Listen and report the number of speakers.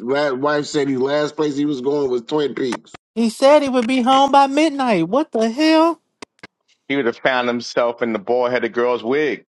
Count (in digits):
3